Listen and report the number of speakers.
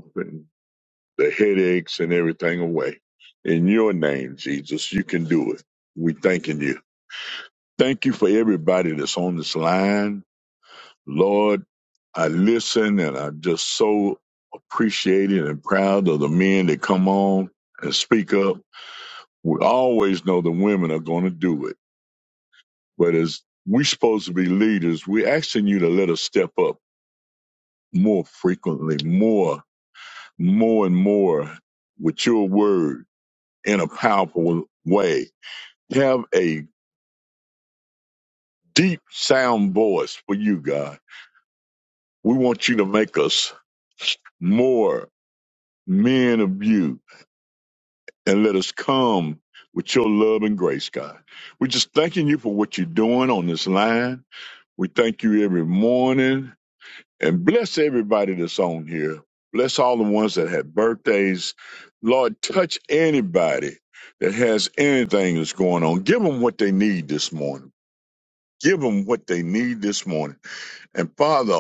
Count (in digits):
1